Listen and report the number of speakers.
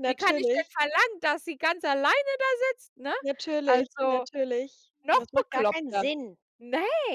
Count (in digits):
2